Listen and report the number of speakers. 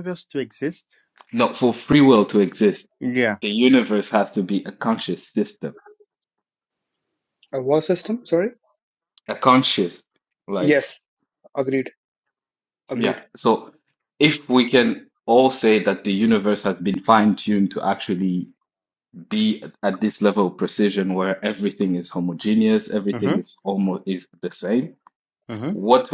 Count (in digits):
3